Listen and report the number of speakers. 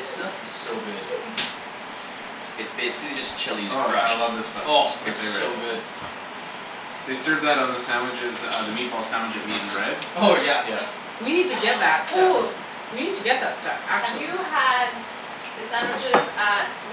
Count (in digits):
4